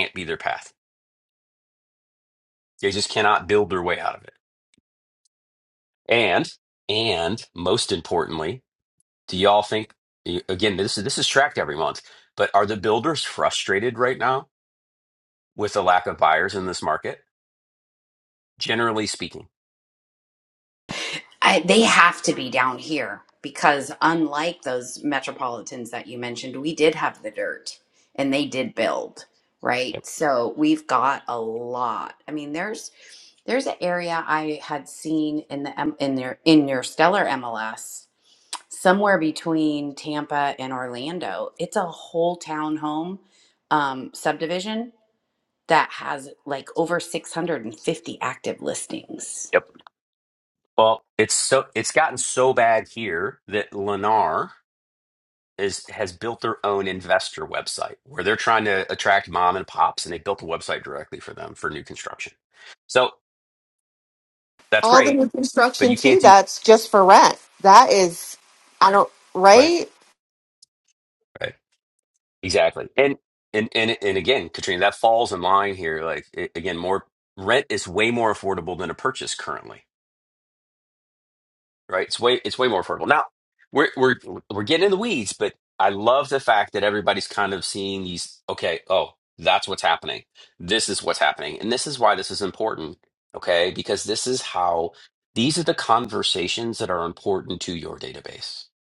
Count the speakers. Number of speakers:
3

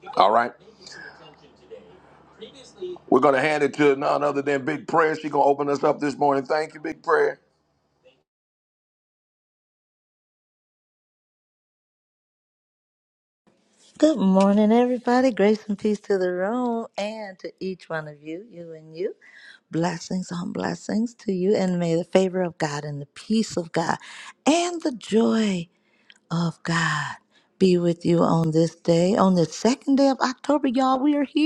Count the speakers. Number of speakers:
2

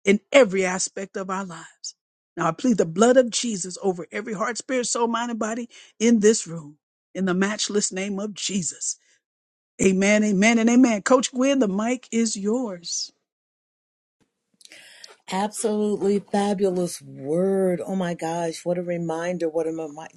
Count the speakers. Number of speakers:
2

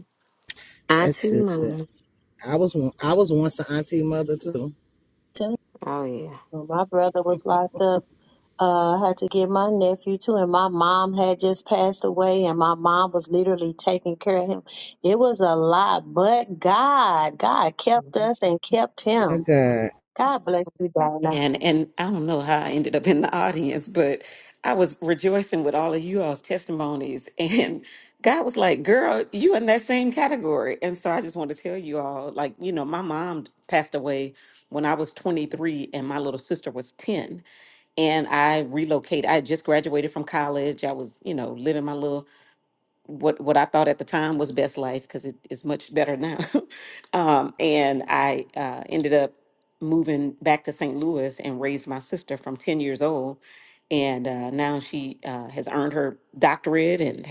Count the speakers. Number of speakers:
4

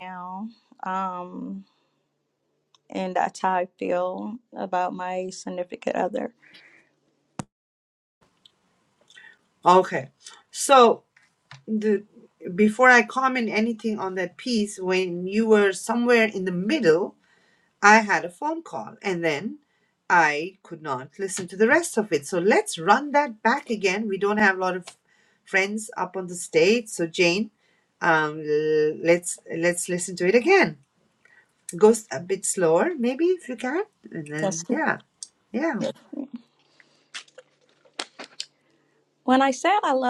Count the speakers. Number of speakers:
2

